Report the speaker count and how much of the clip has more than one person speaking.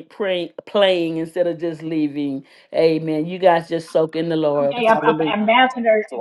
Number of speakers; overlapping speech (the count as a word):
two, about 10%